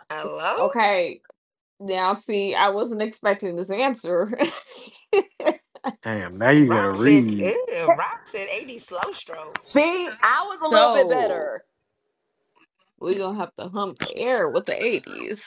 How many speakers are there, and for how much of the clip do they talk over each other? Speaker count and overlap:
four, about 11%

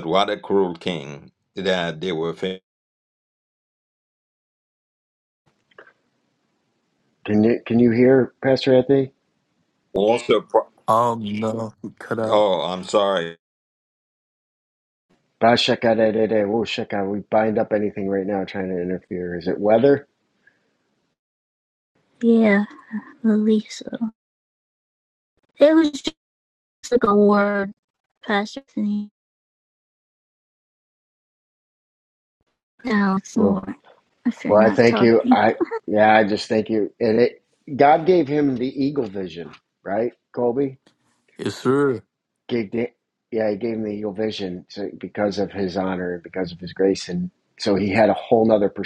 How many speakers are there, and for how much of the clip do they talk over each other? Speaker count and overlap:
four, about 3%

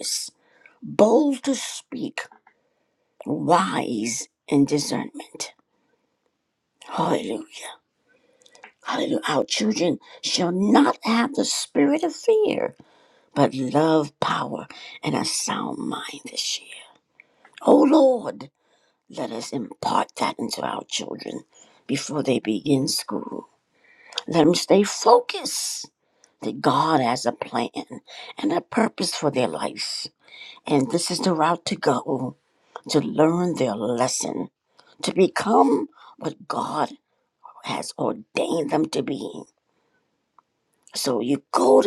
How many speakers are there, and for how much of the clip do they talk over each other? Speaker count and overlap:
one, no overlap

